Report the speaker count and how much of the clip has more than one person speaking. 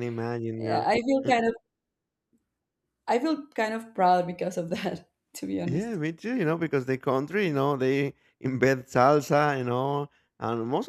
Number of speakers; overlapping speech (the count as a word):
two, about 5%